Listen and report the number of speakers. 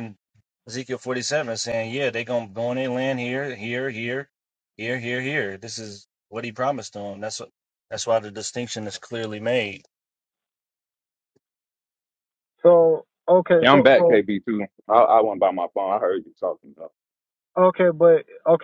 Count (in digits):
3